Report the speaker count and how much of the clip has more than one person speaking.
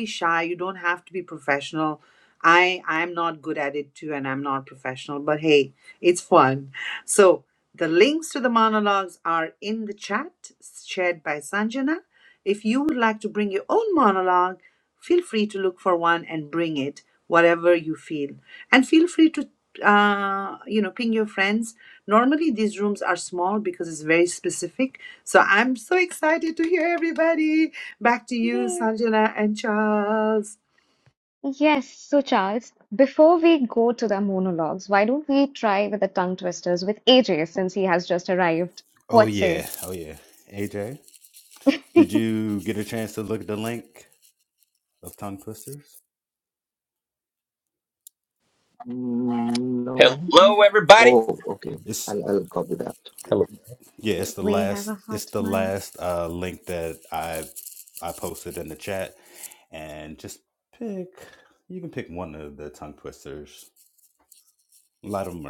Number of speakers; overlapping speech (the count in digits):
5, about 4%